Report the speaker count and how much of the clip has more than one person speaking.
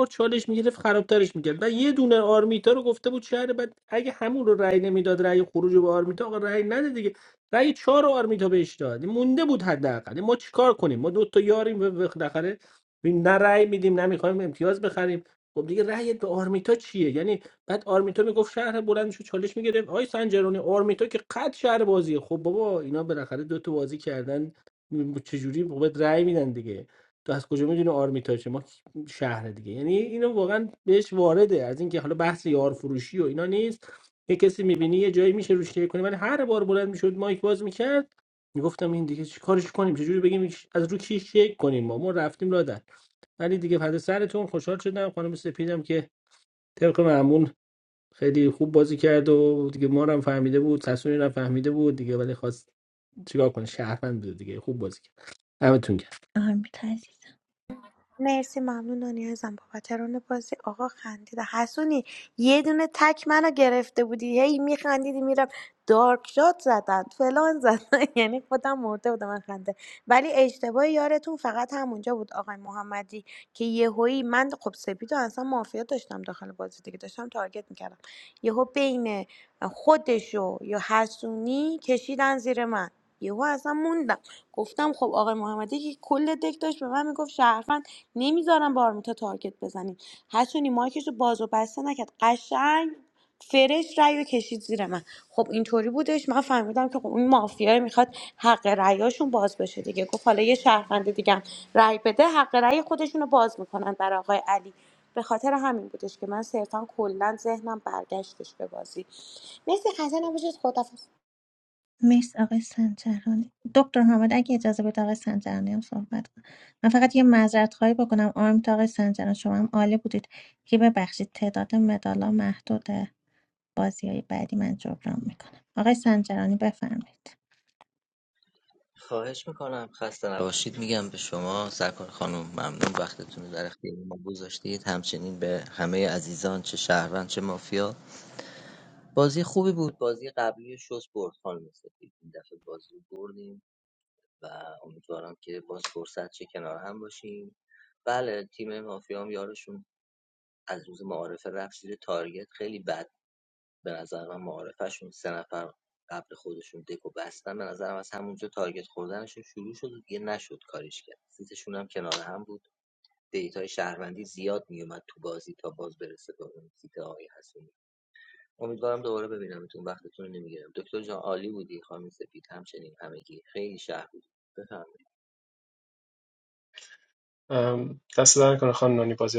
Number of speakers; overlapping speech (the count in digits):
5, no overlap